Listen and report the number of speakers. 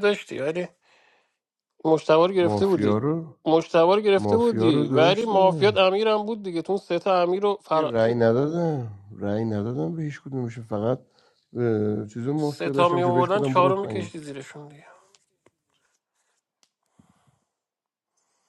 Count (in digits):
2